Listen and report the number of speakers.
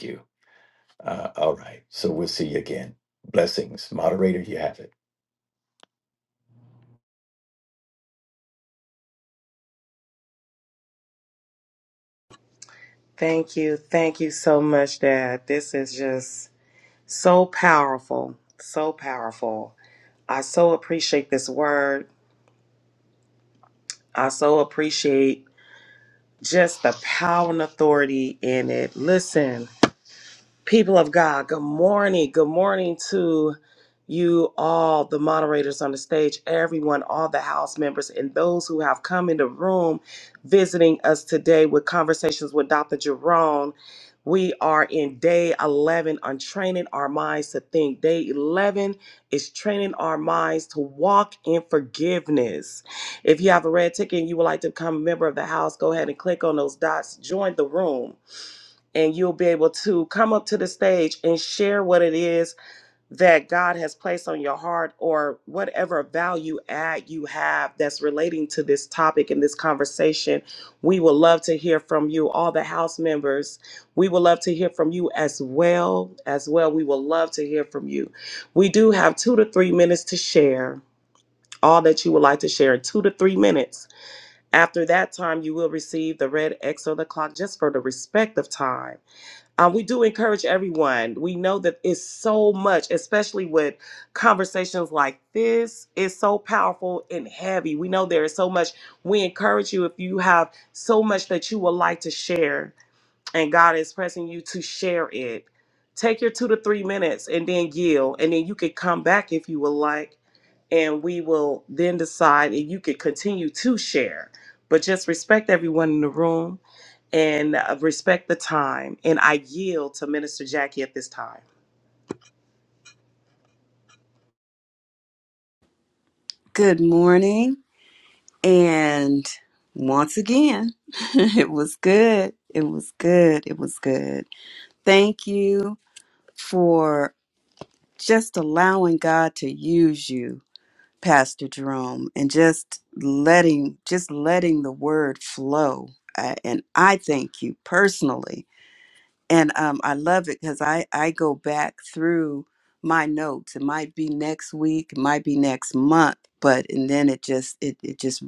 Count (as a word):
three